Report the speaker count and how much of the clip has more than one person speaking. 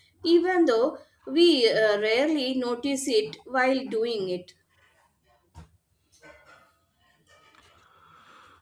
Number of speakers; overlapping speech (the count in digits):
1, no overlap